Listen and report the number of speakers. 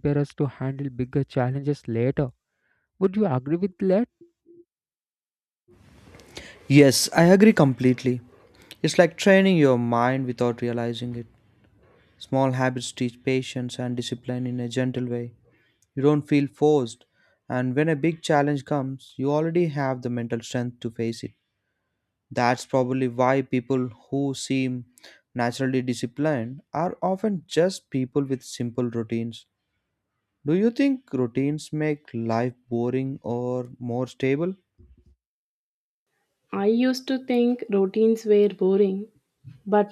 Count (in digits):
3